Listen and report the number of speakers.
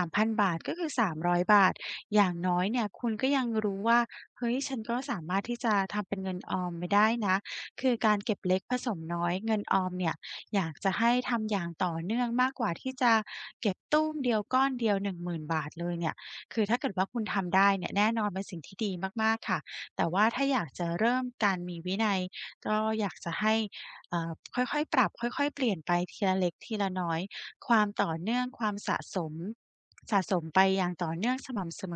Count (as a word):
one